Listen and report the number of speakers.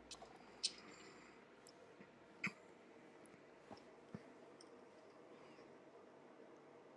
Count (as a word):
zero